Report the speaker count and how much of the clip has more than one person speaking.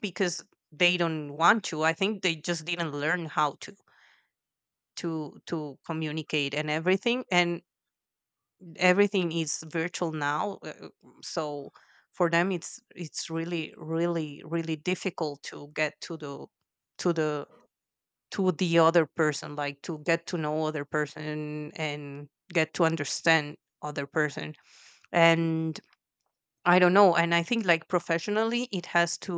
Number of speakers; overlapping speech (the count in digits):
1, no overlap